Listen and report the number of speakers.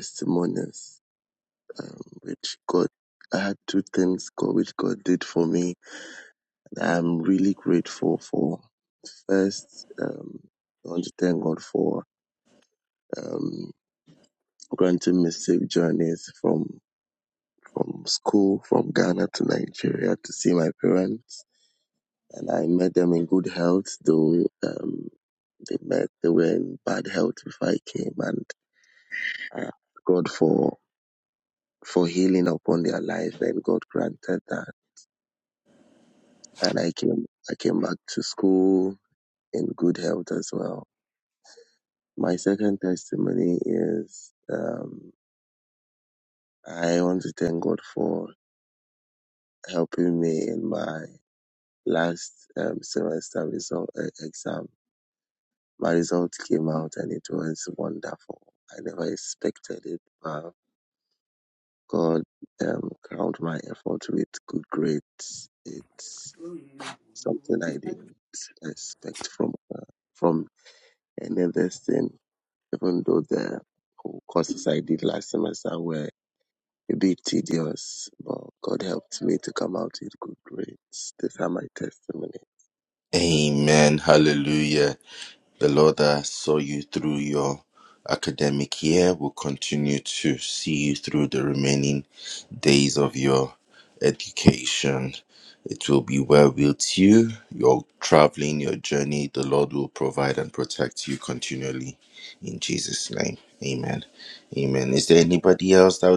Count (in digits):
2